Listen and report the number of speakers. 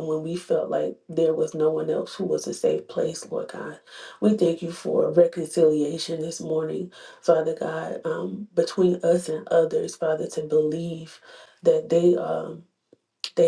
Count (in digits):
1